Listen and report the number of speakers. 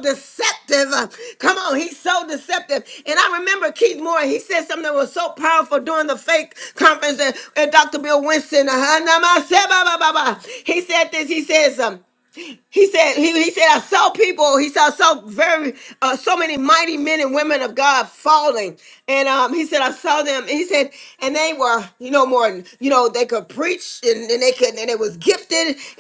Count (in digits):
1